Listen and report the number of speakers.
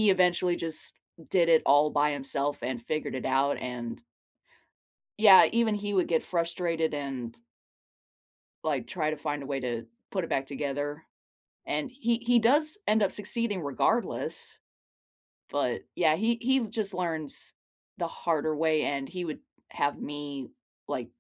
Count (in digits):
1